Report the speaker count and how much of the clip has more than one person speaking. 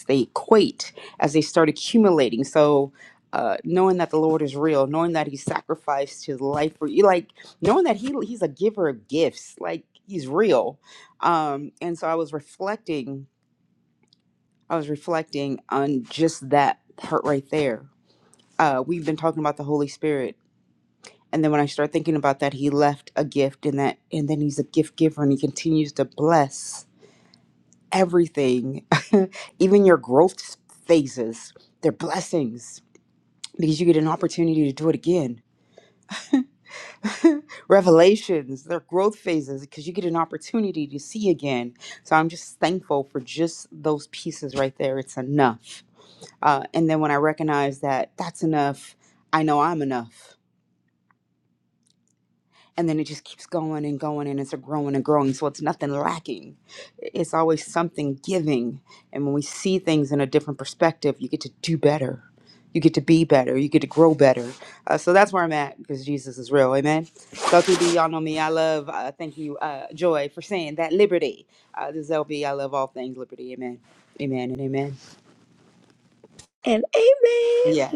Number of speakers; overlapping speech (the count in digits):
2, under 1%